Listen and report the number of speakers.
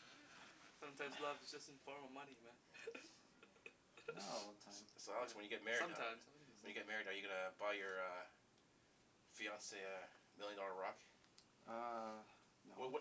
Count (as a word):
three